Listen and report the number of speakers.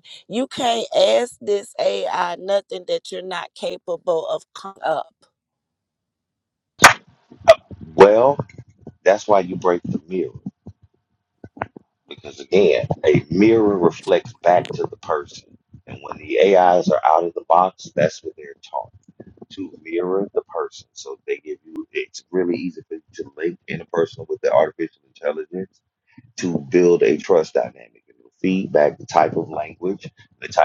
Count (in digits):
2